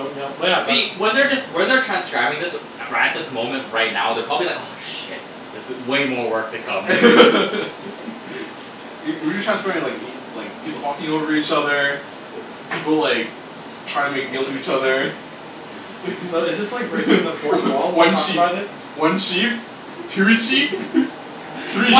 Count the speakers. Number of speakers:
3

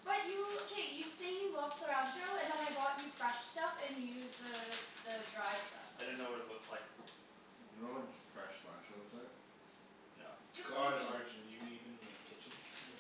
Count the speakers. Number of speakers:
4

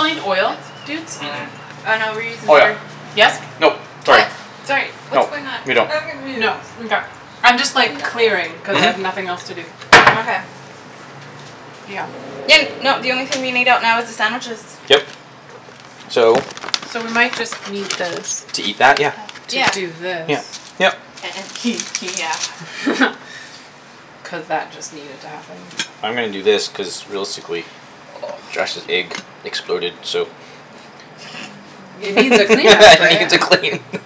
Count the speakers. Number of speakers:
3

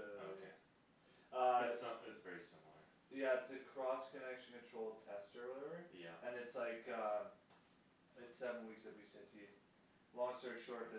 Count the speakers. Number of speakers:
2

